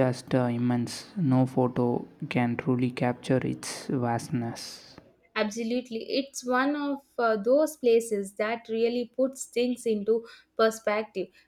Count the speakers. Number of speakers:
2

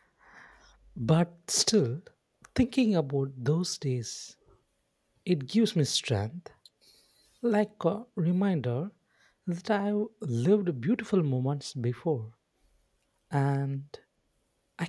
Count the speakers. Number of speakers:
1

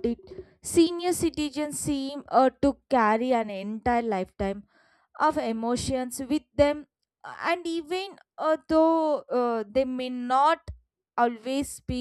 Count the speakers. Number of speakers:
1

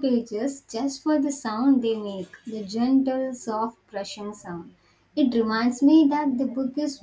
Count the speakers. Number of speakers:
1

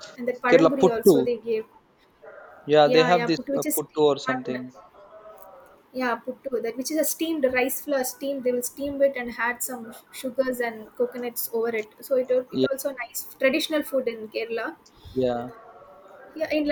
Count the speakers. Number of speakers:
2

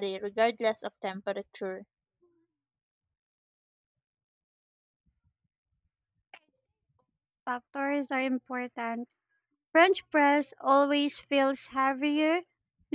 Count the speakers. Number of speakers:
2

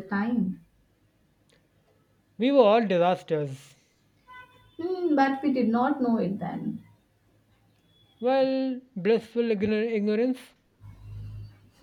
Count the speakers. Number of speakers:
2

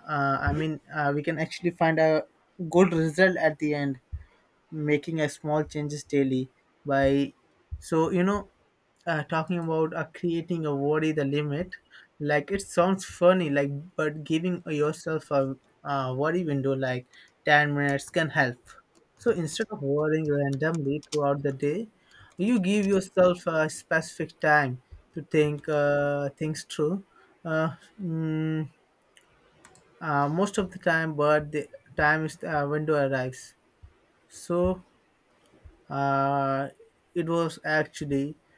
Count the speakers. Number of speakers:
1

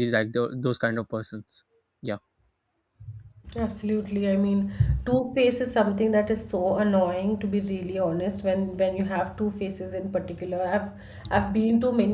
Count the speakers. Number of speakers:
2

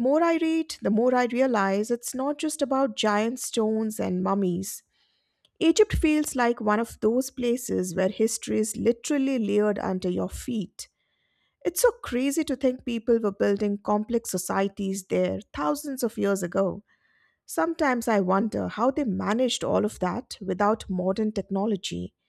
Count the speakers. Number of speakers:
1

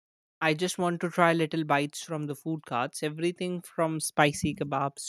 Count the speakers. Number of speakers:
1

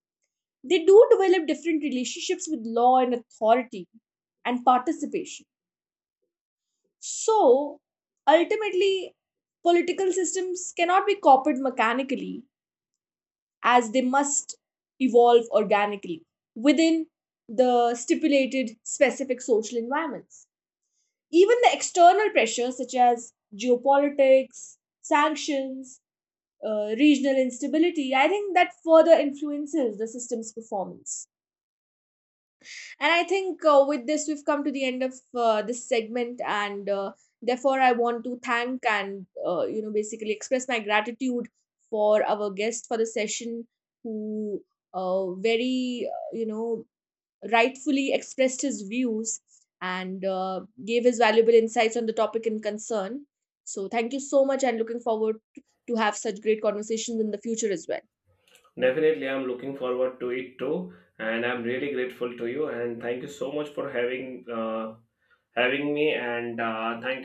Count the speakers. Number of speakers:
2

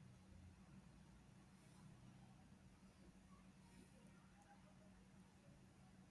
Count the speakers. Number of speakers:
0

